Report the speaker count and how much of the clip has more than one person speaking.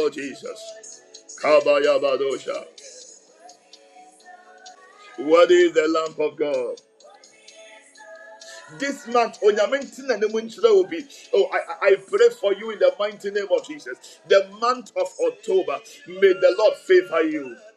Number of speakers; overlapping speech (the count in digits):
1, no overlap